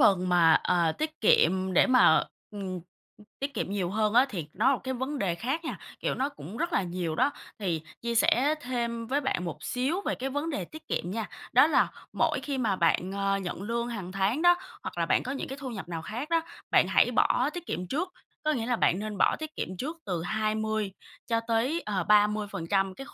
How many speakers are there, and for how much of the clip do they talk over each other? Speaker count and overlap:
1, no overlap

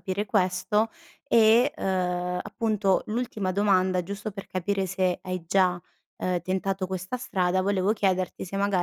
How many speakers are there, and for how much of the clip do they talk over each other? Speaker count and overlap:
1, no overlap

